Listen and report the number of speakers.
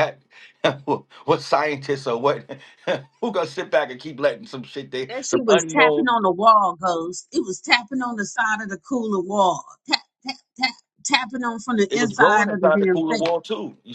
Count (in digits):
2